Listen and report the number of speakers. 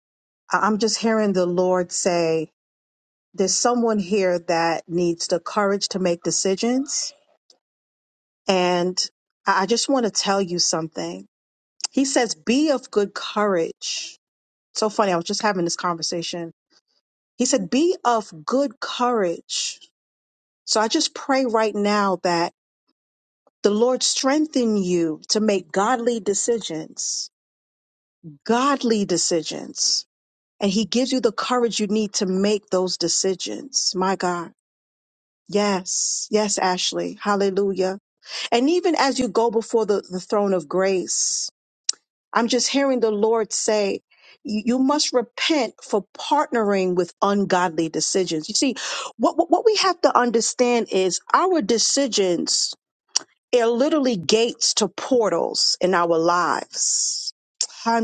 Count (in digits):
1